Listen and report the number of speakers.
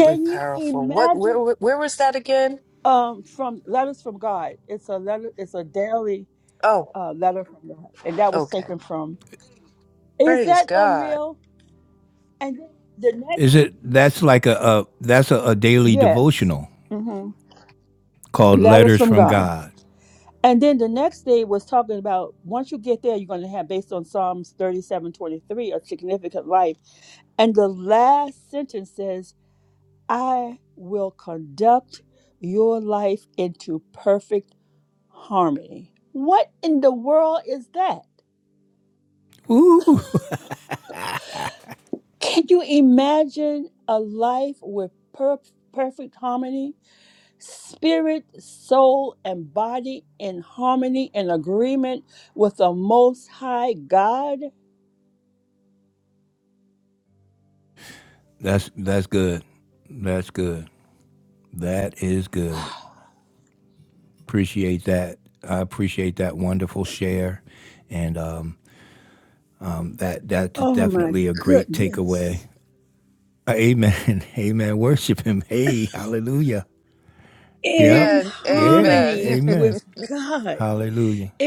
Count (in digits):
3